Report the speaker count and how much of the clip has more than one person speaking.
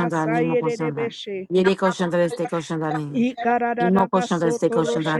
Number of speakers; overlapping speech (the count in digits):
2, about 39%